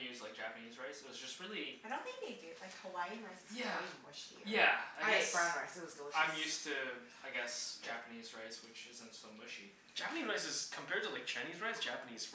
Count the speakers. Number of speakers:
4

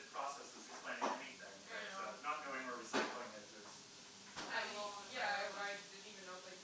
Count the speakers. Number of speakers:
3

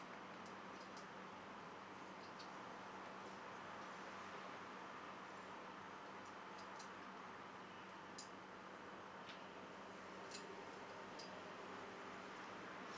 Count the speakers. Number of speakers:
0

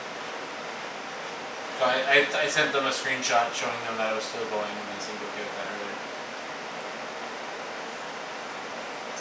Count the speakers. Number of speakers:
1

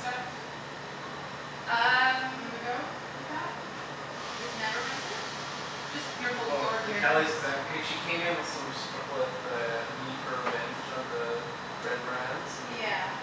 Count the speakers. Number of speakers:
3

